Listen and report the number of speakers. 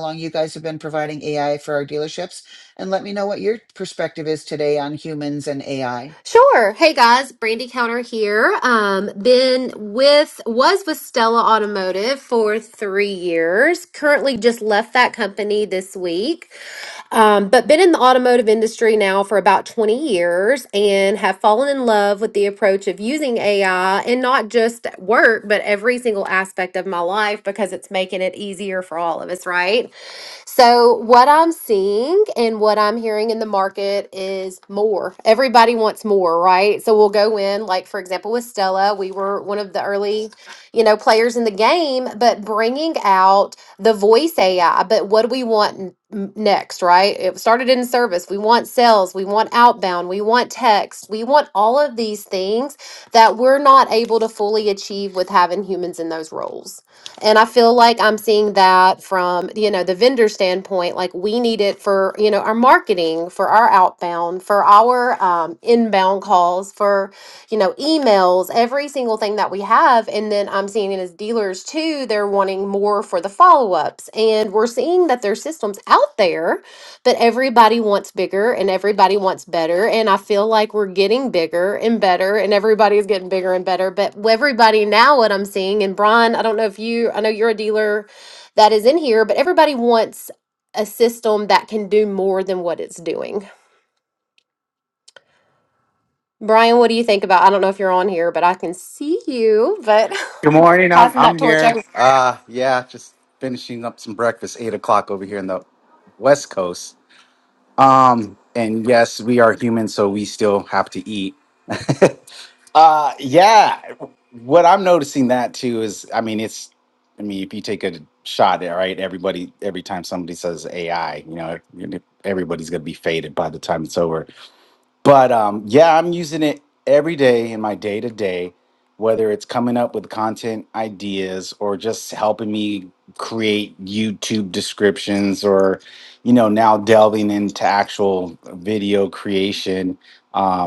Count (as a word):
three